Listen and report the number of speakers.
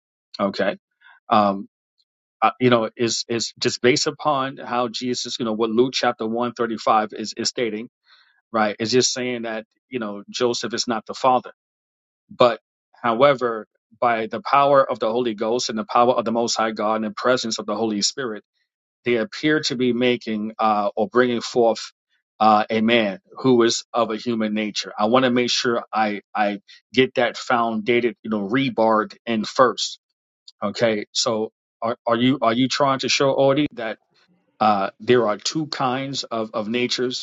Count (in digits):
1